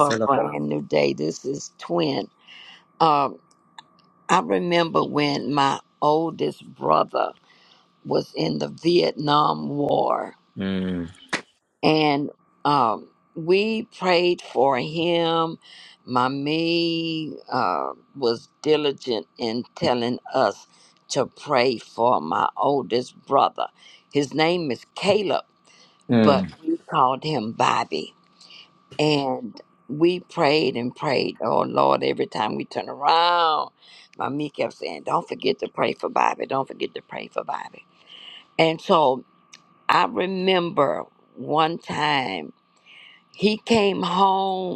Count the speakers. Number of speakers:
2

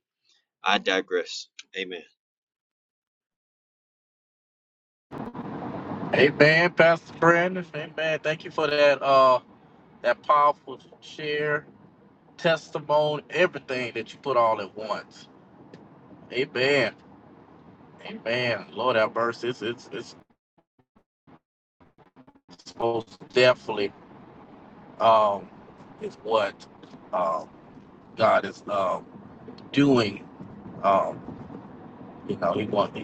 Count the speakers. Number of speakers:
2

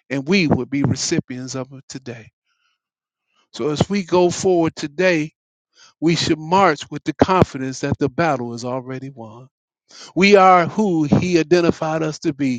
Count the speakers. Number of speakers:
1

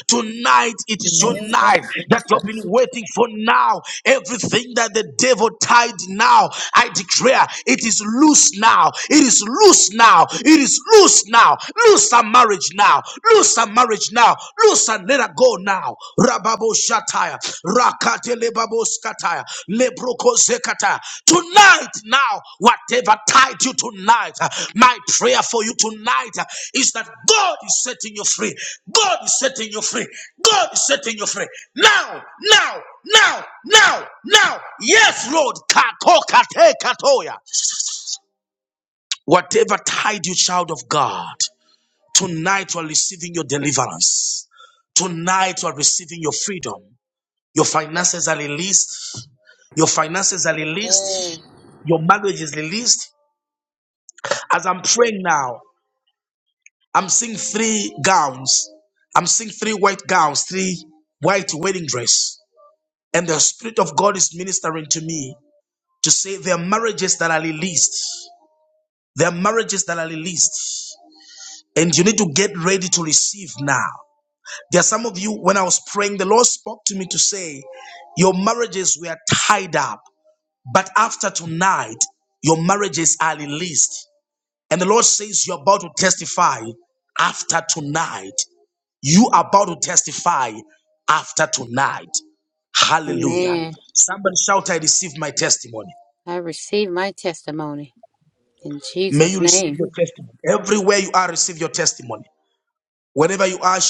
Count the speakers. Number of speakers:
2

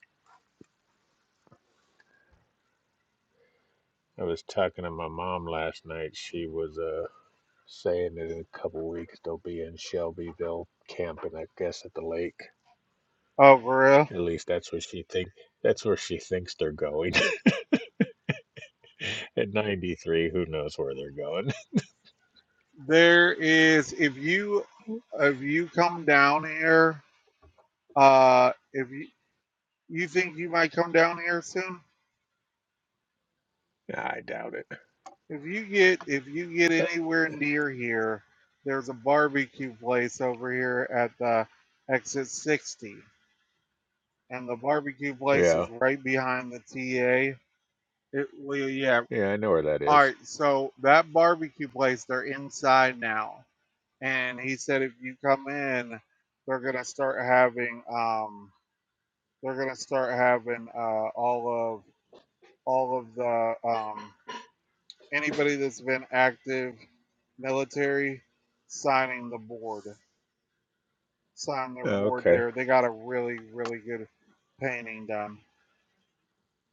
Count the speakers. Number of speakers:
2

